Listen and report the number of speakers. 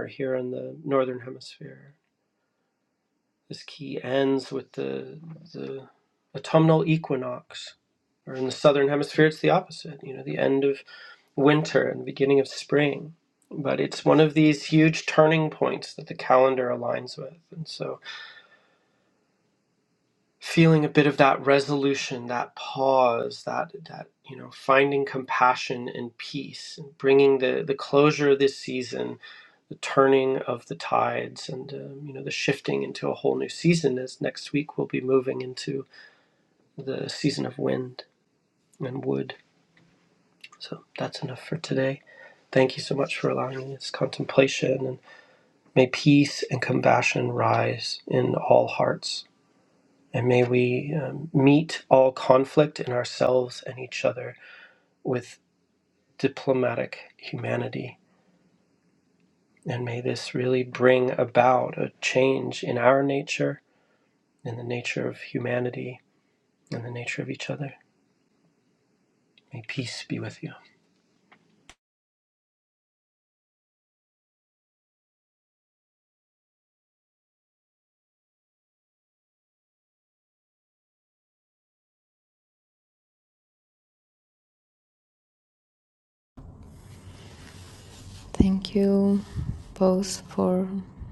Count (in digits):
2